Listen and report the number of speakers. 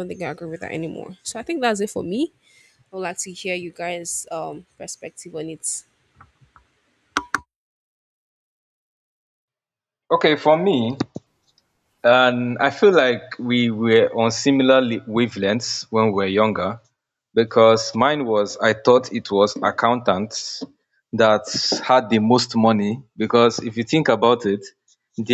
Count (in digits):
2